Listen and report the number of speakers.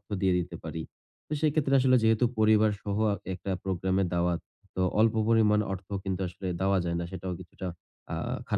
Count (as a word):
one